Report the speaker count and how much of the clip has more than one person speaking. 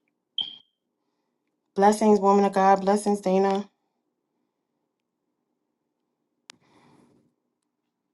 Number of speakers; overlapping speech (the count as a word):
one, no overlap